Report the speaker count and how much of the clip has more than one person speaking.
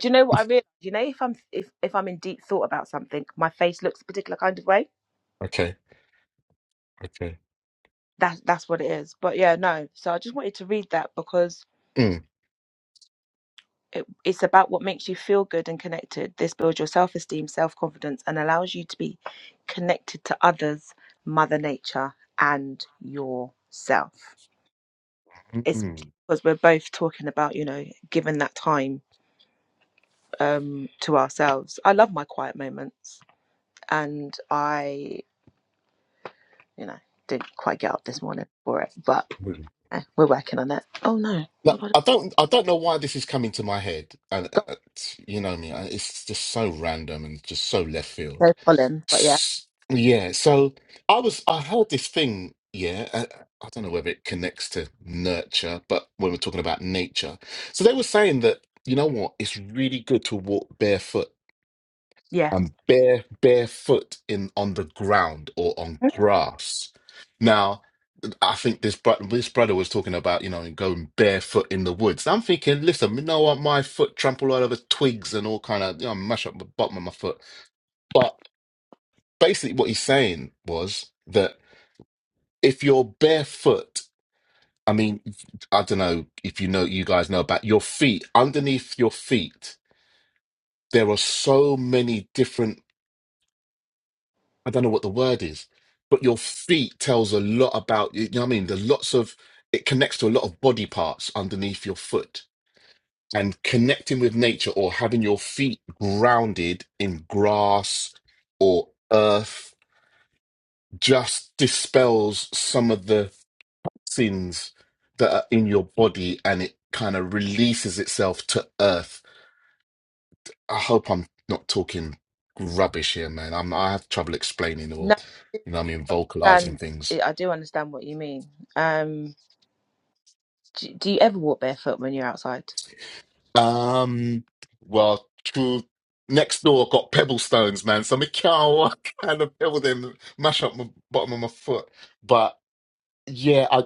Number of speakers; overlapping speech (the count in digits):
2, about 1%